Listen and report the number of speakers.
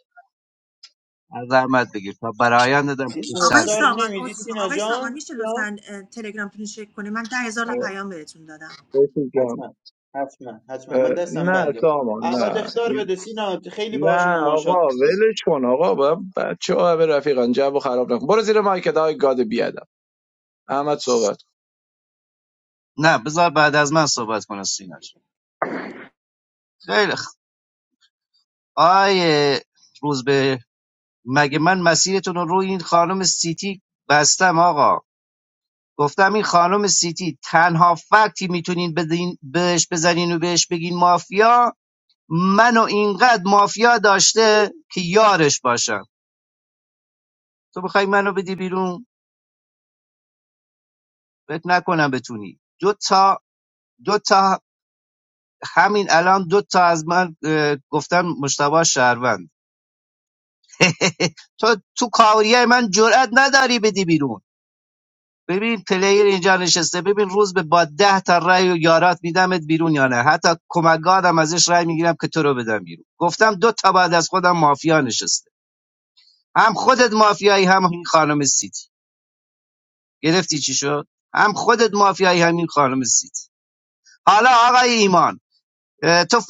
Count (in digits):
4